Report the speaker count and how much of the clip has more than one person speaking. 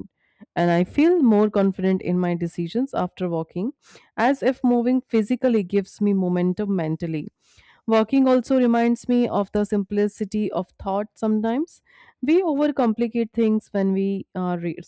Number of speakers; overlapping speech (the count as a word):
one, no overlap